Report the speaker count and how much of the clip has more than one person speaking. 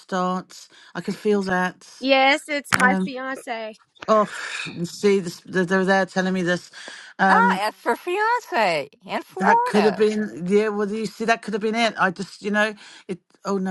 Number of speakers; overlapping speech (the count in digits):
3, about 9%